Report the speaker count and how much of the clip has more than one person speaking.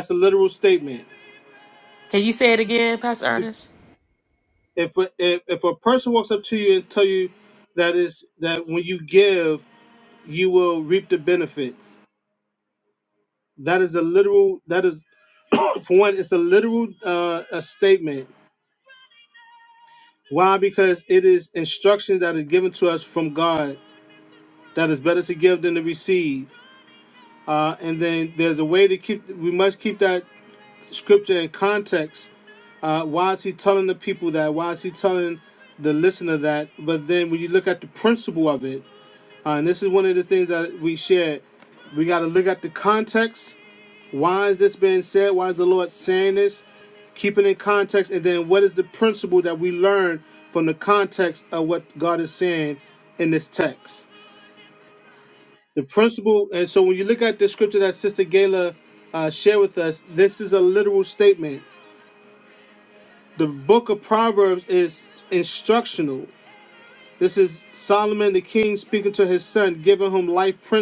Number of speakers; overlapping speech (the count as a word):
two, no overlap